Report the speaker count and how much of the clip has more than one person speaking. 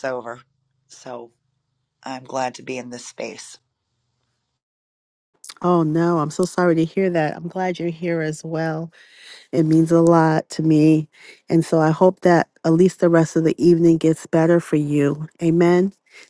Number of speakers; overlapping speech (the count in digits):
2, no overlap